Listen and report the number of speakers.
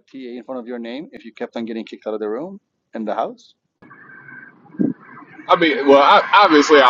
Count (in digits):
2